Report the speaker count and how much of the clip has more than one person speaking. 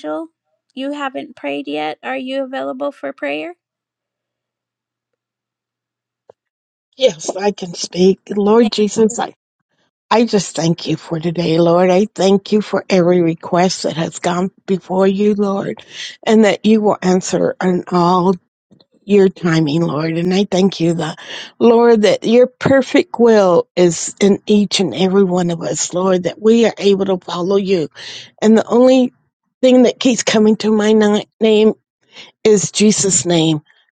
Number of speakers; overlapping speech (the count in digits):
2, about 1%